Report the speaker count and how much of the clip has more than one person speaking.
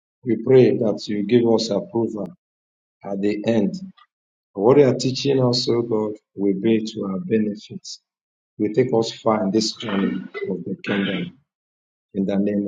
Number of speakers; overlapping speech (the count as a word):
one, no overlap